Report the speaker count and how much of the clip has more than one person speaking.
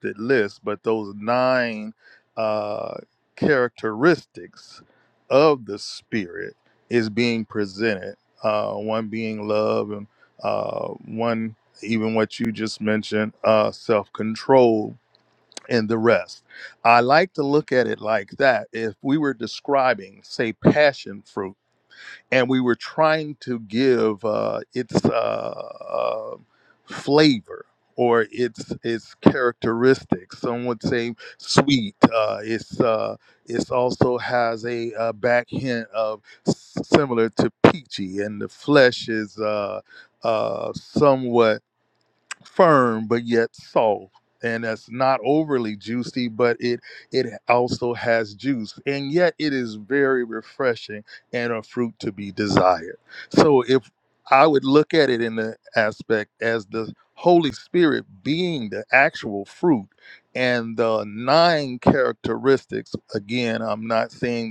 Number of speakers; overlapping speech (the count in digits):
1, no overlap